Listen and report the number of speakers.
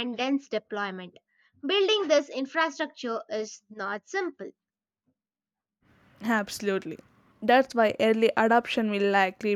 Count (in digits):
2